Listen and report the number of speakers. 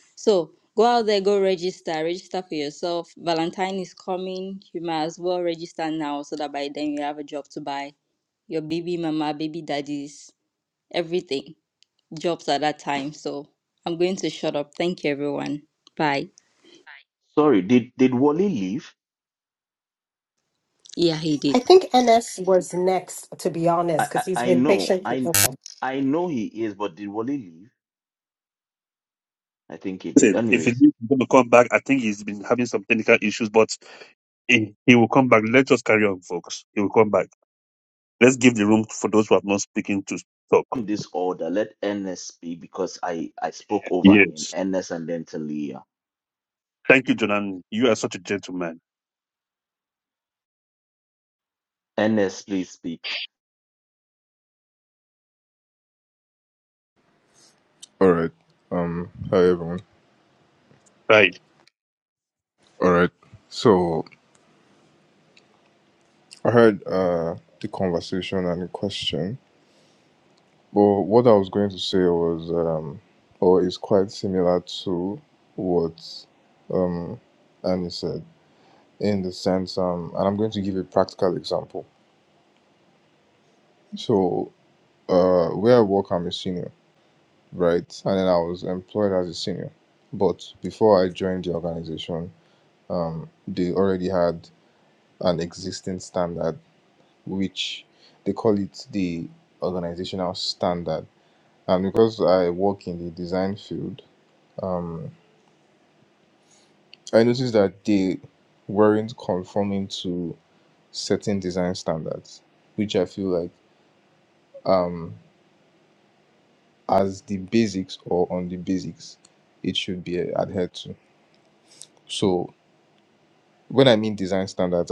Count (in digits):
5